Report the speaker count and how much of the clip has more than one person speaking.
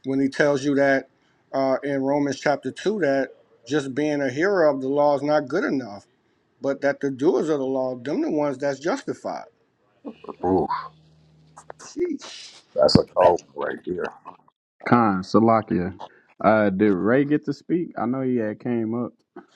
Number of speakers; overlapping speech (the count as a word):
three, no overlap